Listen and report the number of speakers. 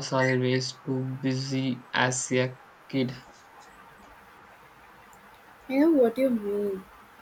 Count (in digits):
2